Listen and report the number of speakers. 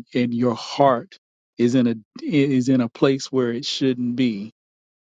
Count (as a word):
one